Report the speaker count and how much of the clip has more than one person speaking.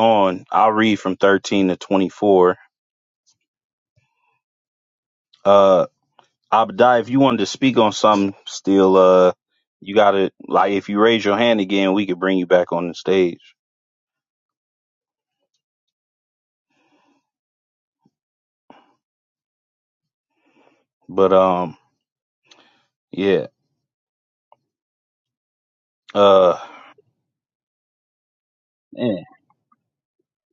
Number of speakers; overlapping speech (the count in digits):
1, no overlap